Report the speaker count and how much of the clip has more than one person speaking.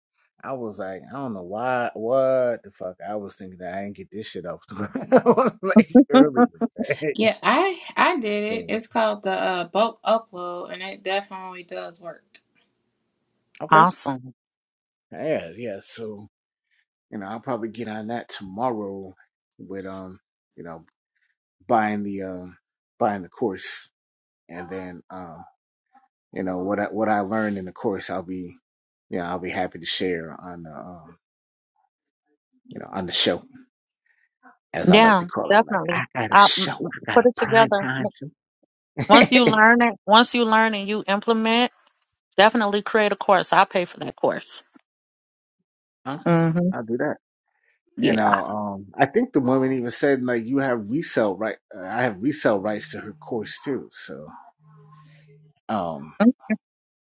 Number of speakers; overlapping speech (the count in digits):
3, about 8%